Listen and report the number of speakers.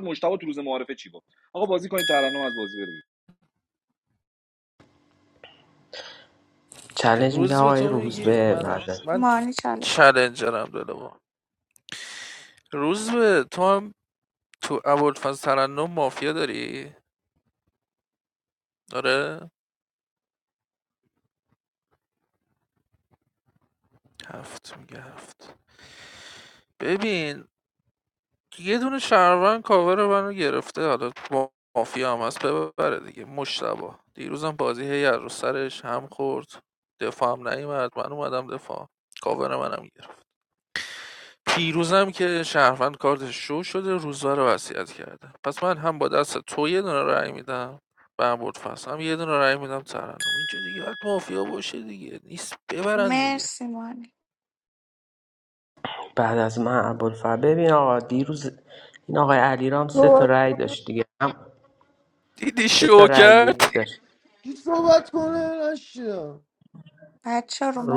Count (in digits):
5